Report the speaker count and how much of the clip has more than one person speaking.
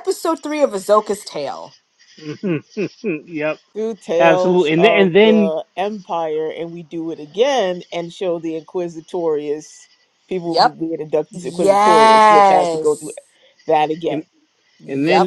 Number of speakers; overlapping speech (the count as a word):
three, about 18%